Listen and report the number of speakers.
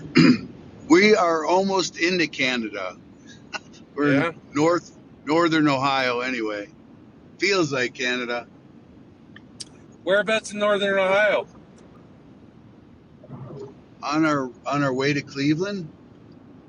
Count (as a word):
two